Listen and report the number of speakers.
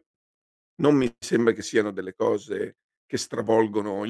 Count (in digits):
1